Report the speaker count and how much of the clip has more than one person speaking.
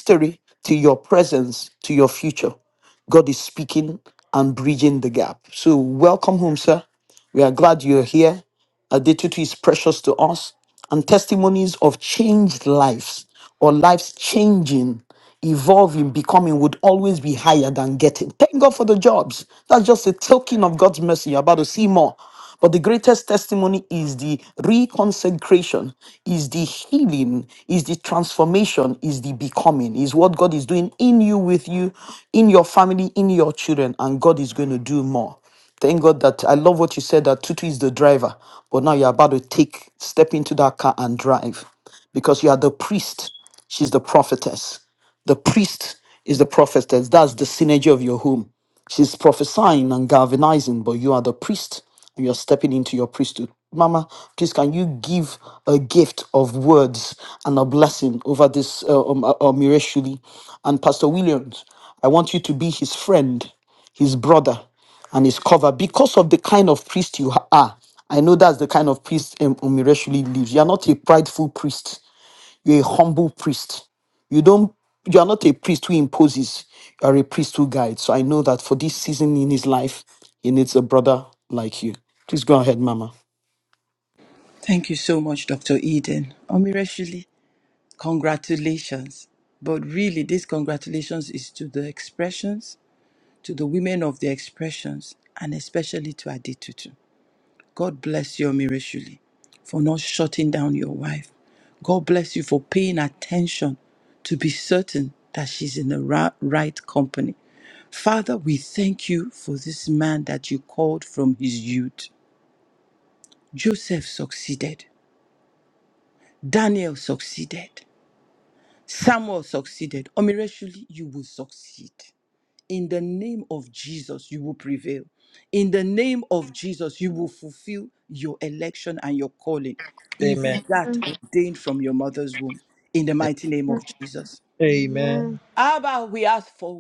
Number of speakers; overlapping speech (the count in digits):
3, under 1%